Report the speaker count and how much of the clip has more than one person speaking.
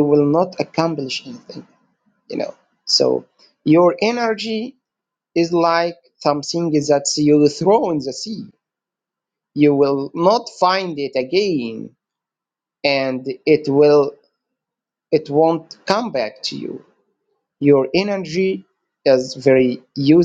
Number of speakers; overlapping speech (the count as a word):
one, no overlap